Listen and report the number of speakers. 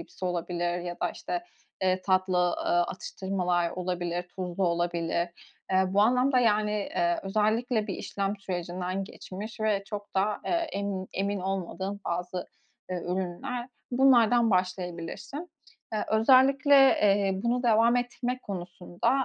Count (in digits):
1